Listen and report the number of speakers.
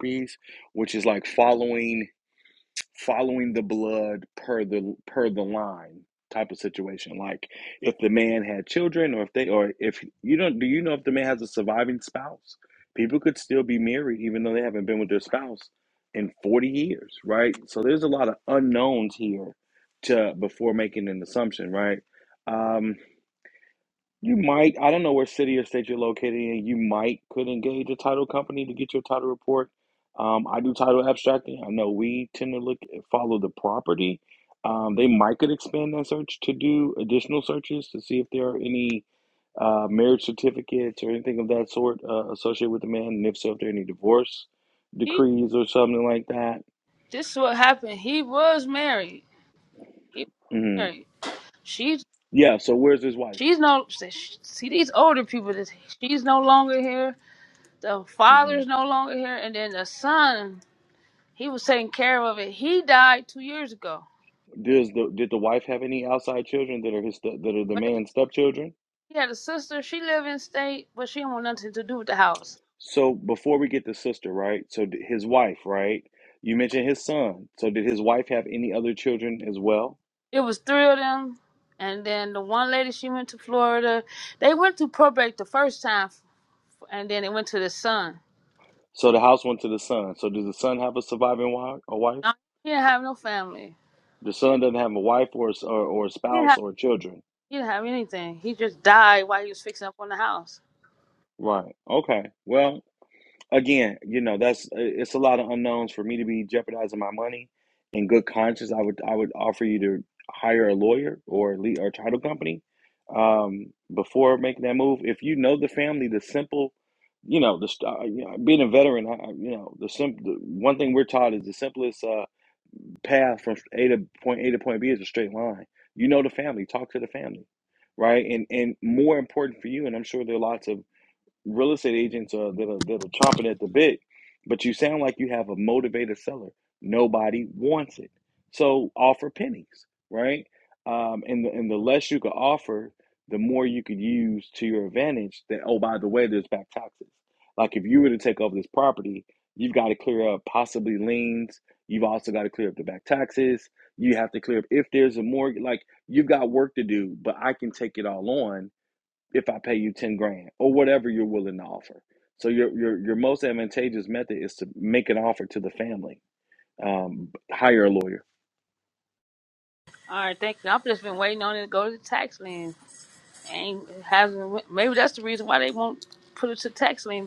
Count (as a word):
two